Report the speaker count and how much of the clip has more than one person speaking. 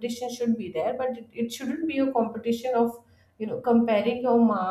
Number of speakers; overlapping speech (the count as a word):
one, no overlap